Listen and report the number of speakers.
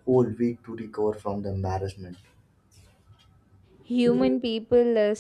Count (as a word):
two